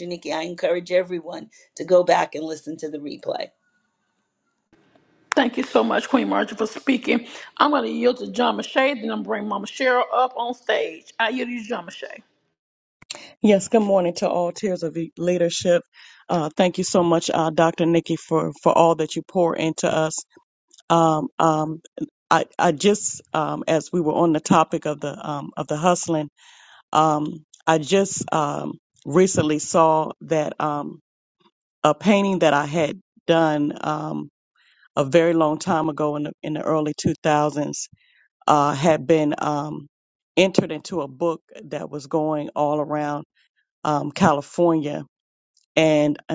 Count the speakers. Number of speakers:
three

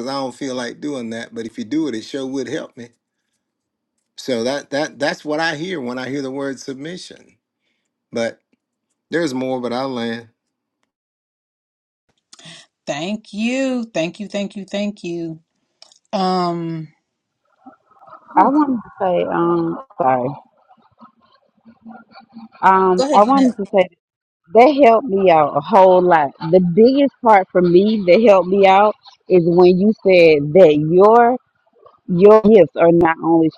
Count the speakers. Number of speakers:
three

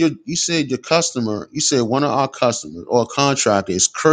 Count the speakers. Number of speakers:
one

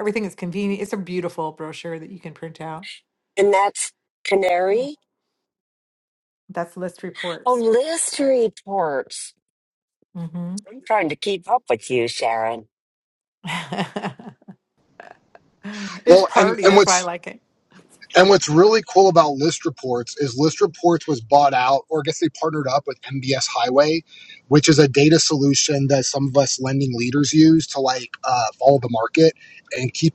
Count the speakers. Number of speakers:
three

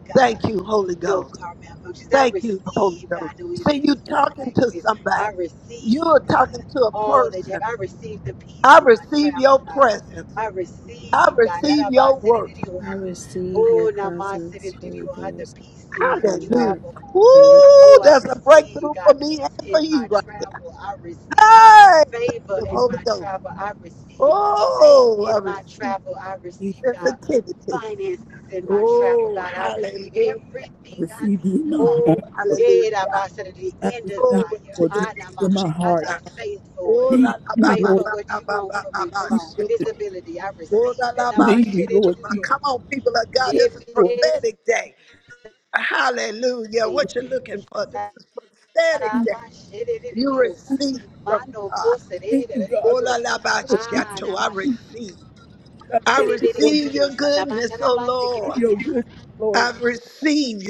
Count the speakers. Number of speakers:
four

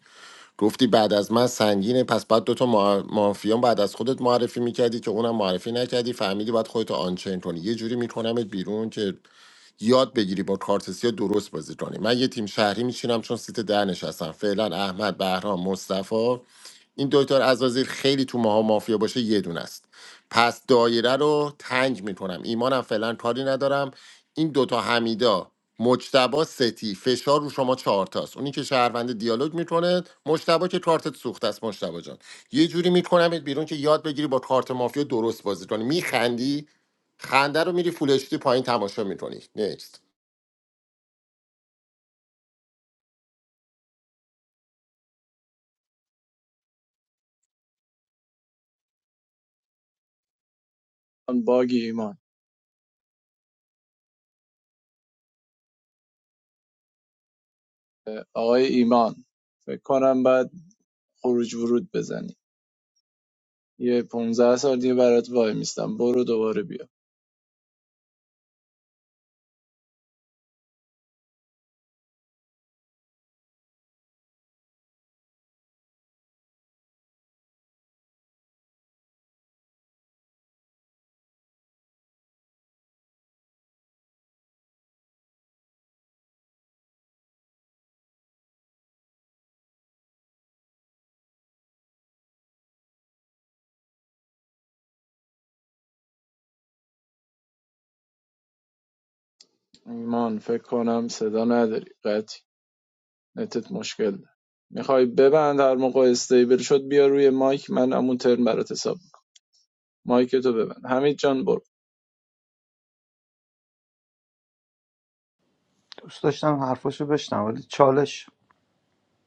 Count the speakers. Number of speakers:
three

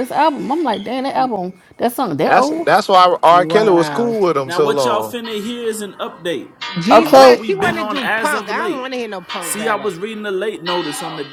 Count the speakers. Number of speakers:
four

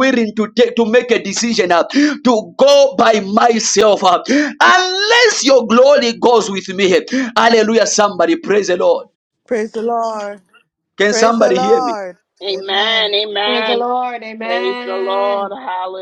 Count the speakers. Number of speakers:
four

